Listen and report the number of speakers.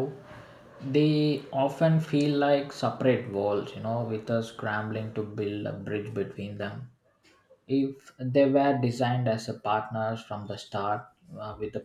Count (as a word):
one